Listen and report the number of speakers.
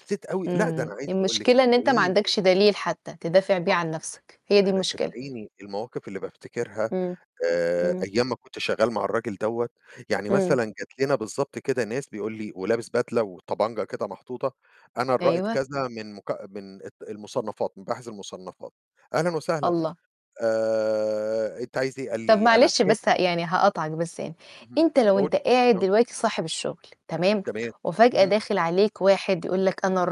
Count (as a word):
two